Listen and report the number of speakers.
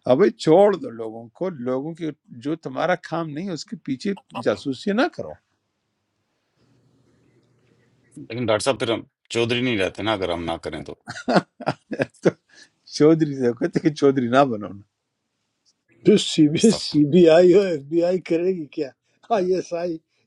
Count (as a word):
three